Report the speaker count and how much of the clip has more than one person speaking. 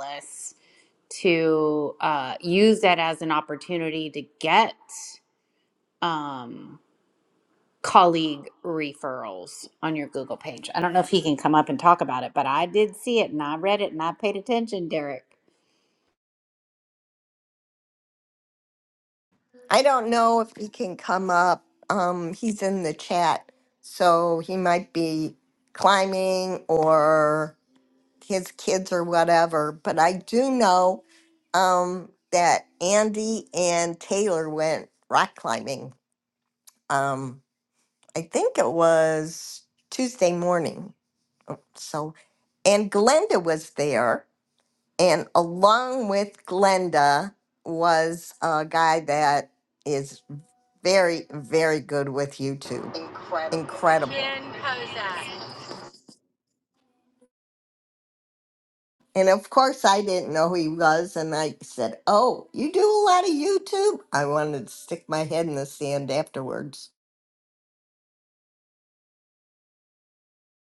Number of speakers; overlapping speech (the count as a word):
three, under 1%